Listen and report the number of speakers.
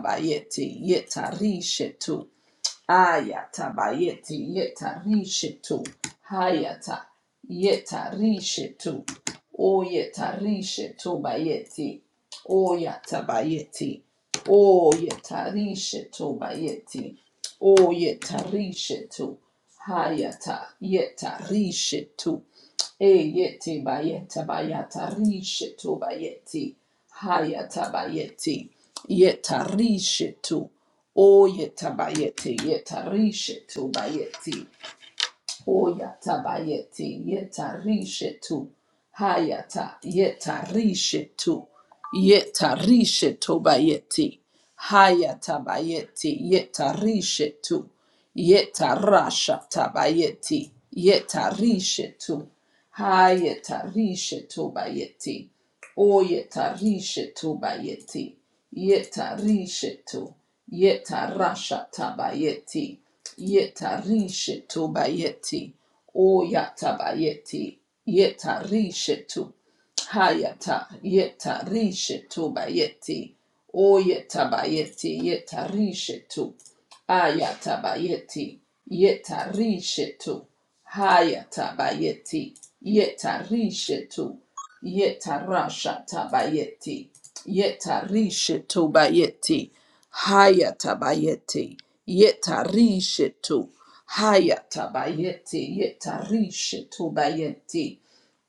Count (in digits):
1